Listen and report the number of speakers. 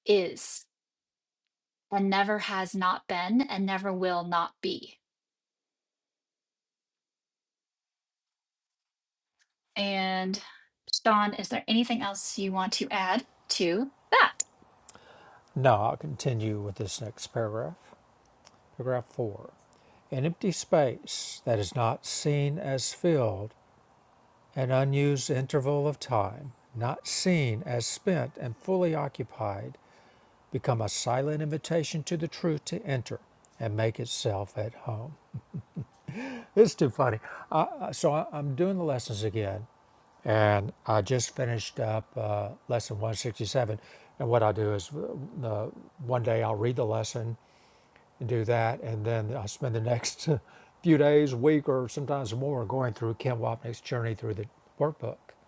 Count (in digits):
2